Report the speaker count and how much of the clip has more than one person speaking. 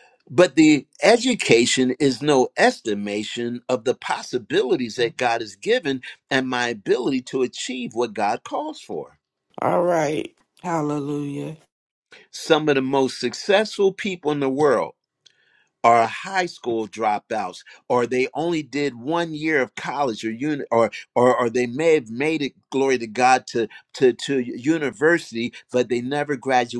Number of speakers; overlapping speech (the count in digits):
2, no overlap